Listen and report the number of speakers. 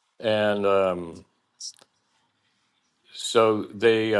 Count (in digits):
1